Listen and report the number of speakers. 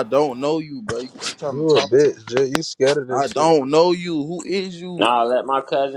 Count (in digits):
3